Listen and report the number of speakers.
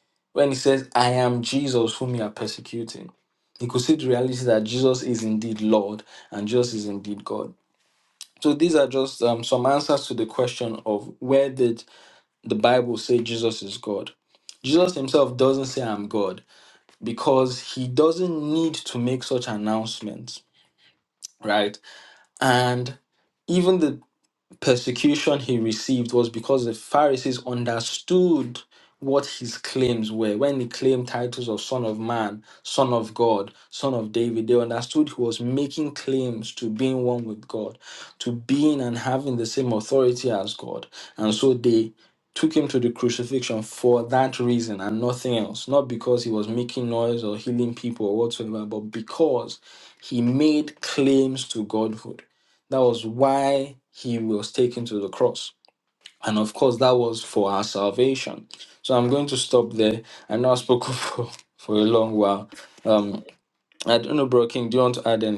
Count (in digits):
1